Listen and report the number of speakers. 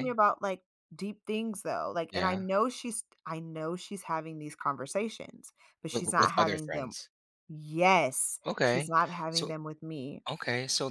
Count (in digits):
2